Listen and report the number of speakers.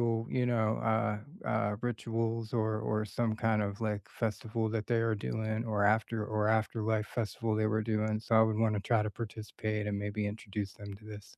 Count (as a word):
one